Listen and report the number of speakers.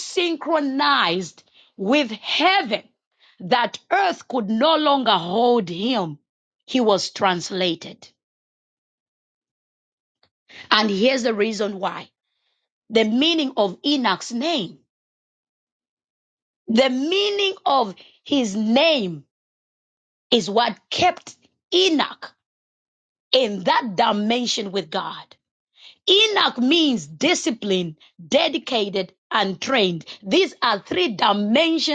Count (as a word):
one